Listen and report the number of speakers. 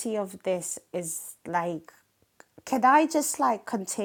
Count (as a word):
one